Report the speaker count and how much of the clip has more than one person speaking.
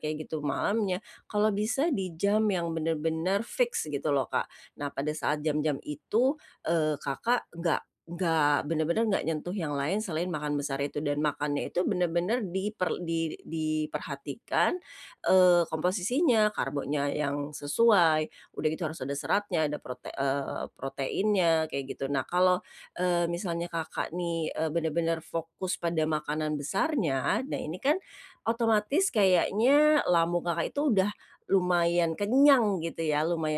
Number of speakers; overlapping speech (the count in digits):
1, no overlap